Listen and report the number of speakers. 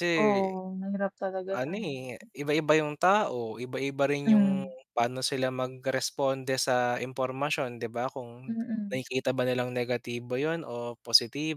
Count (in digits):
2